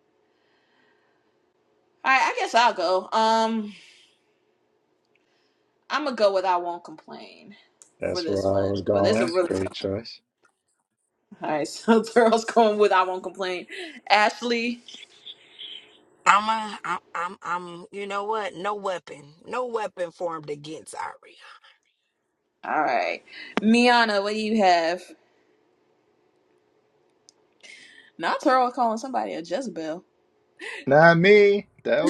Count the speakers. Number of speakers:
3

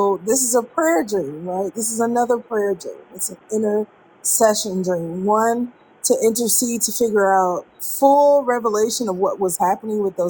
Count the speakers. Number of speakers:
1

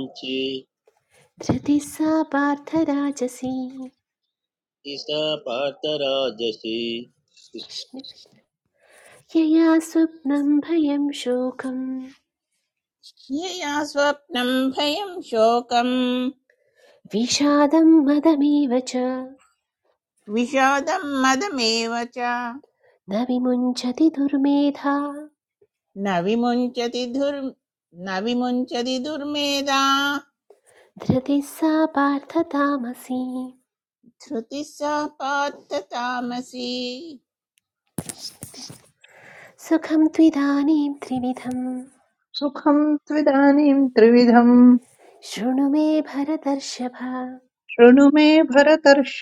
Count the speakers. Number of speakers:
4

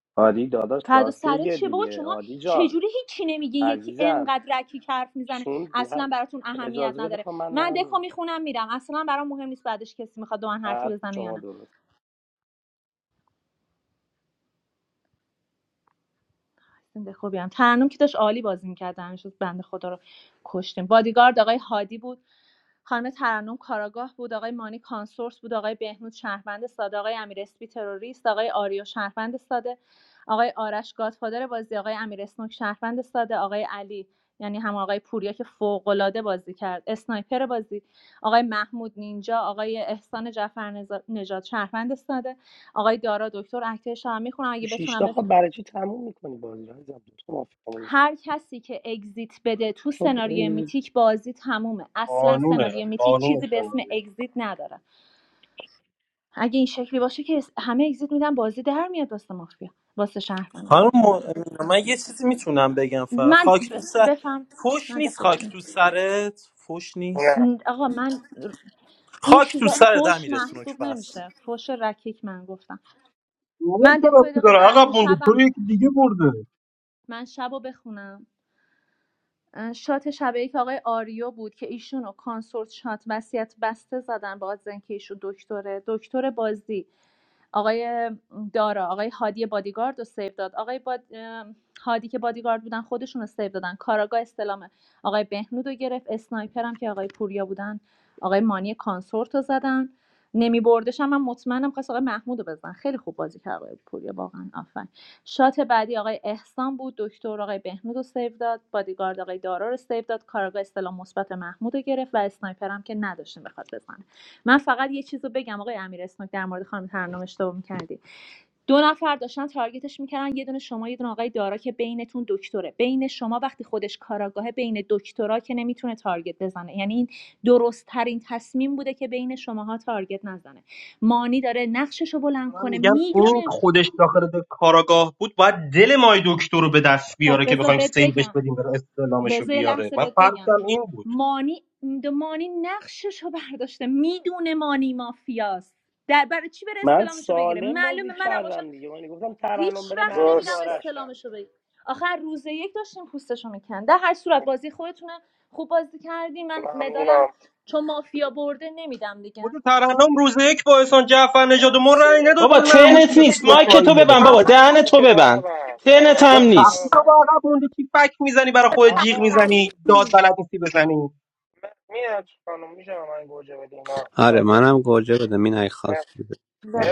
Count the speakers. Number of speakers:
6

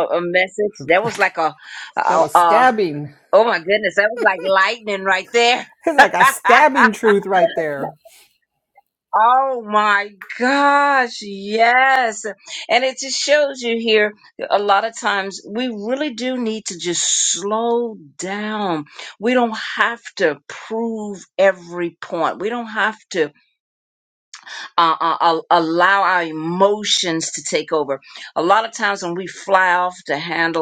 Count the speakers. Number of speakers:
2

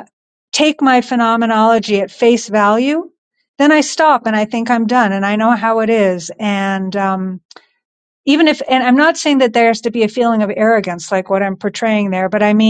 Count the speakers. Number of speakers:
1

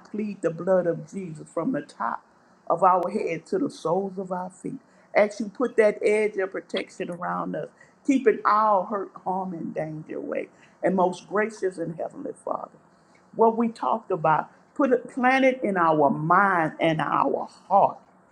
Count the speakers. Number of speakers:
1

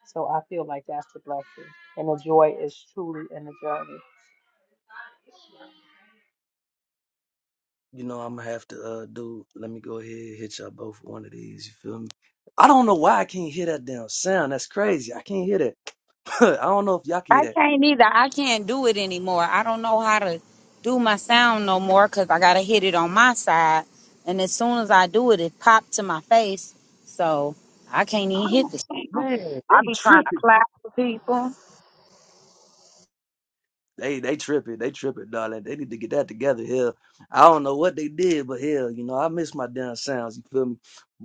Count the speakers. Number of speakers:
3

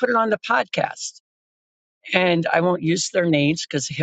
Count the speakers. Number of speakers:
1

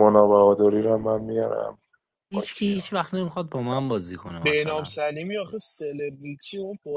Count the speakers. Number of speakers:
3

